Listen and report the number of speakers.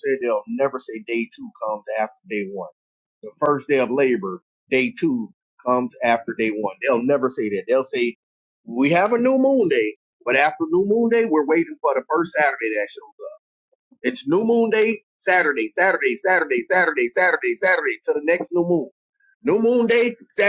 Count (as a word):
one